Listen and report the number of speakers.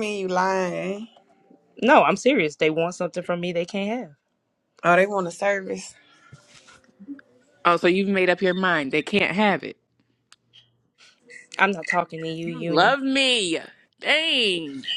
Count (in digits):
3